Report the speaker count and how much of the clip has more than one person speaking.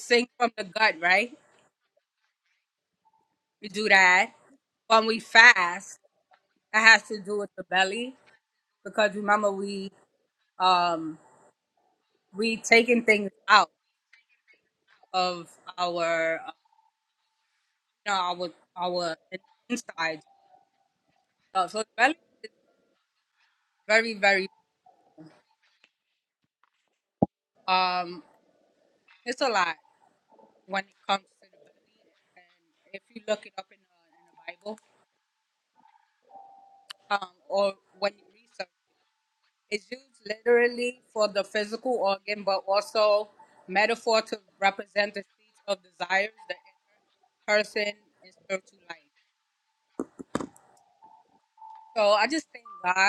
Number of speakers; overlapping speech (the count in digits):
1, no overlap